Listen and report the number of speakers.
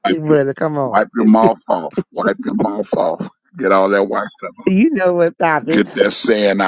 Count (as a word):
two